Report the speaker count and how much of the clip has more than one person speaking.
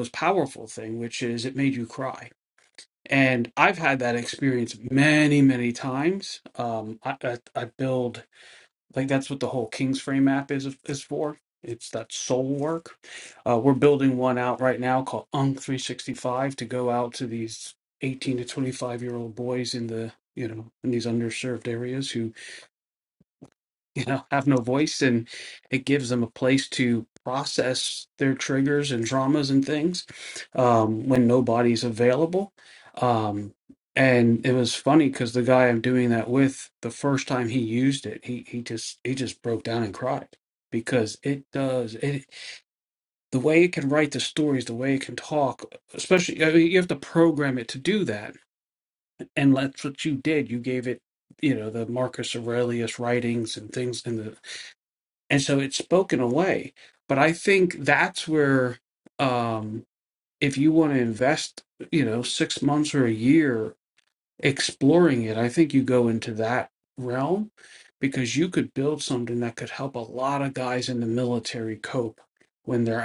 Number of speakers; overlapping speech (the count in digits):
1, no overlap